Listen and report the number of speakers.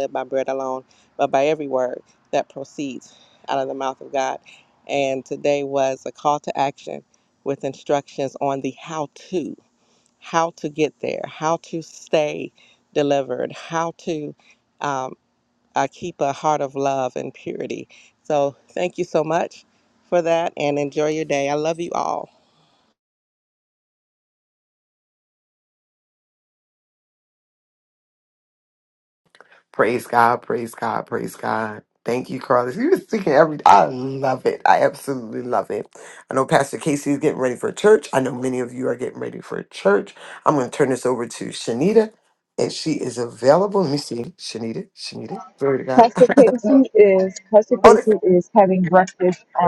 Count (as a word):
three